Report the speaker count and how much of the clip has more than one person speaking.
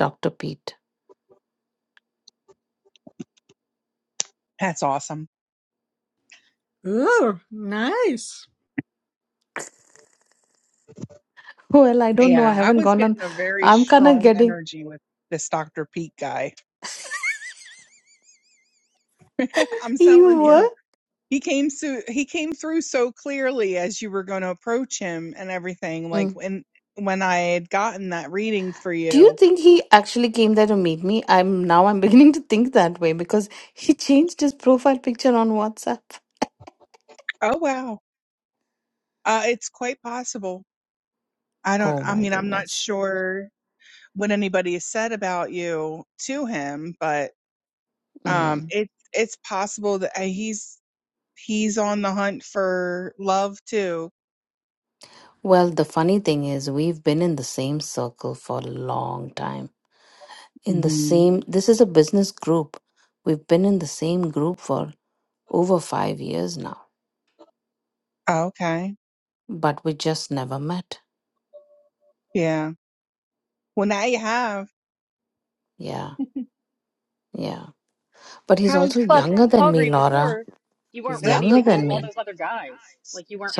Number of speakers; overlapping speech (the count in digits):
4, about 9%